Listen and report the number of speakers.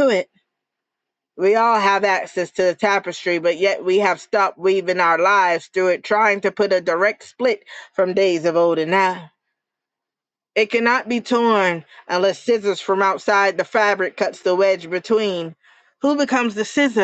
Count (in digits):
1